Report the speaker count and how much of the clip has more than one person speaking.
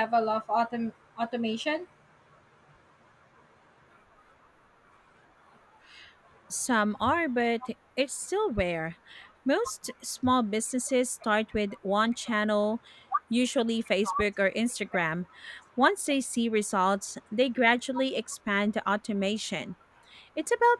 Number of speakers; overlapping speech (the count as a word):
two, no overlap